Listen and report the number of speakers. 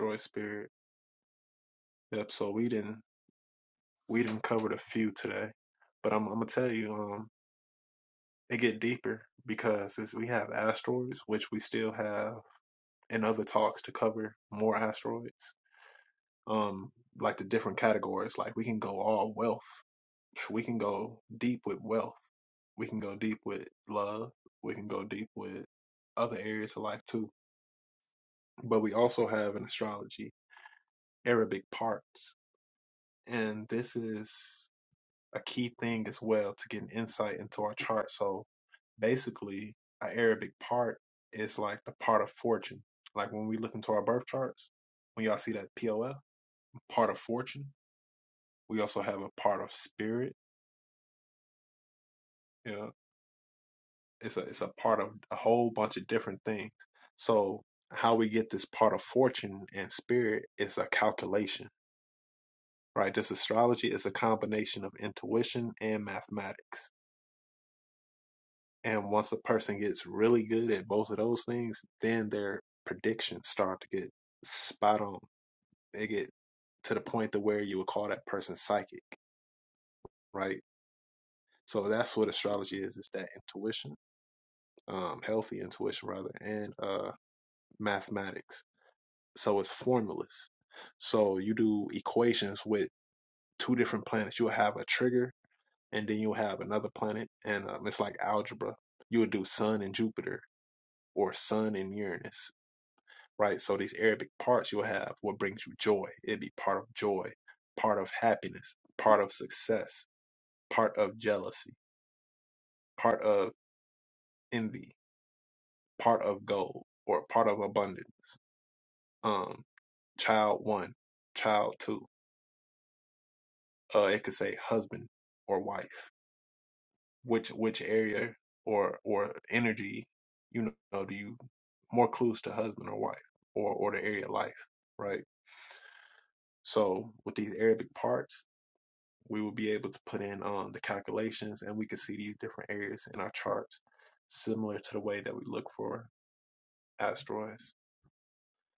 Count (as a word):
one